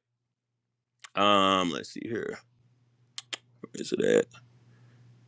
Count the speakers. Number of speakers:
1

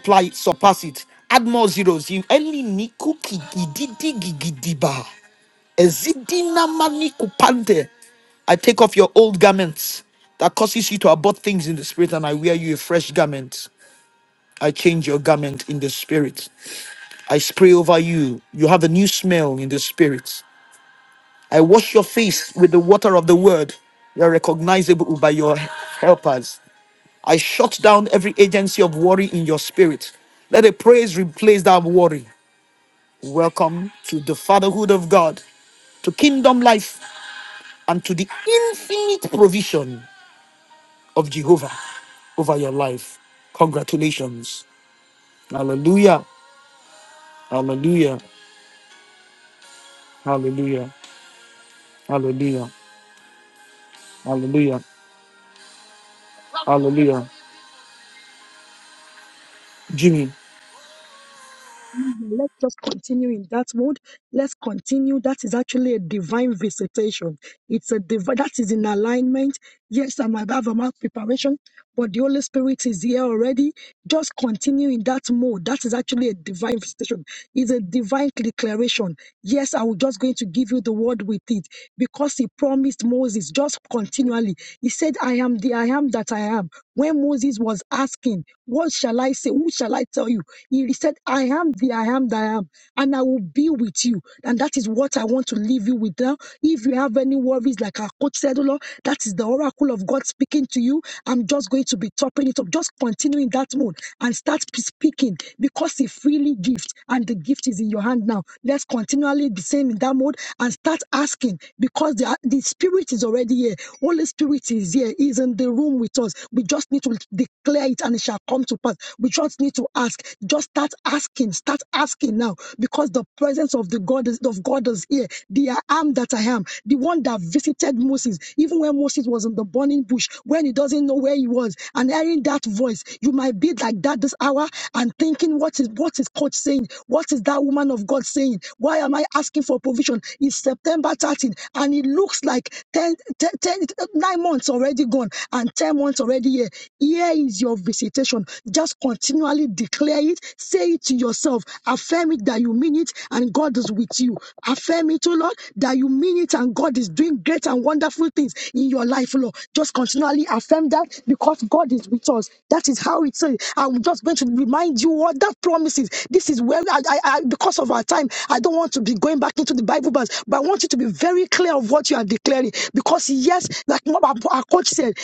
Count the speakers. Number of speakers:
2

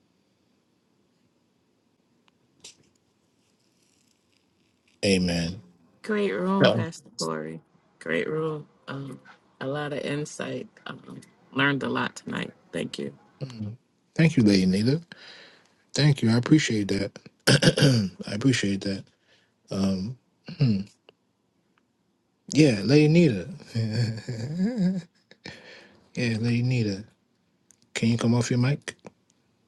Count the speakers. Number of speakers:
2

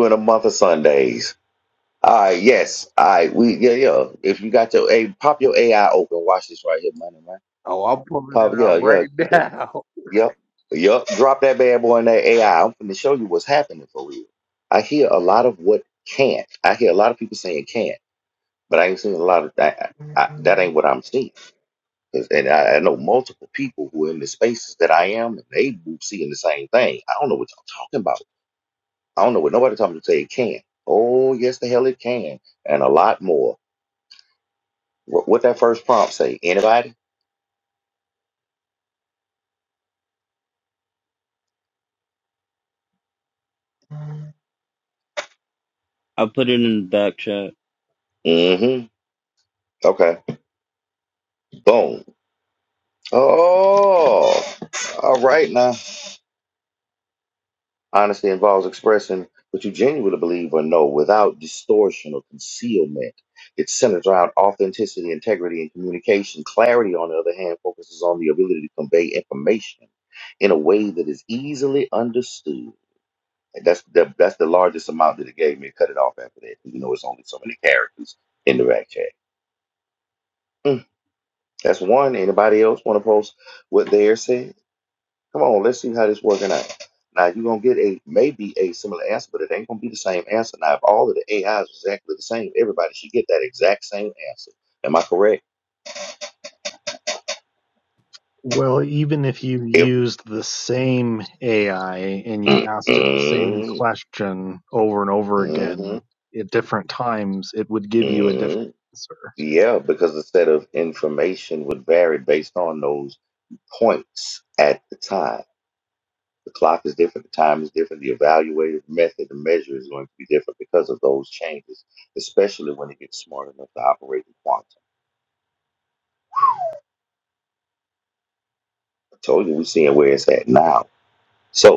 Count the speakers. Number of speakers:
4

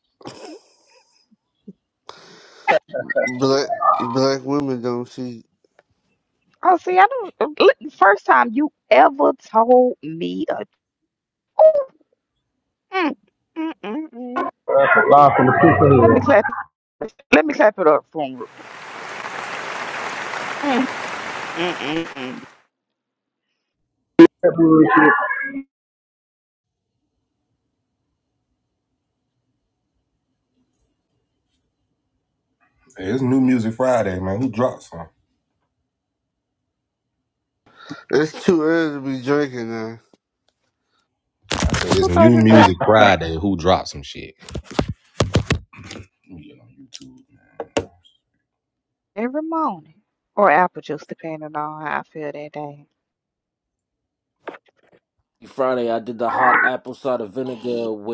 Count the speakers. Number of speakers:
5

